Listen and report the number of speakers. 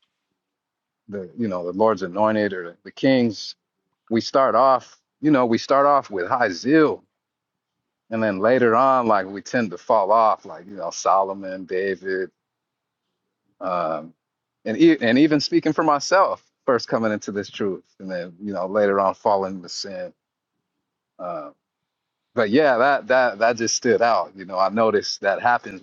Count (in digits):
1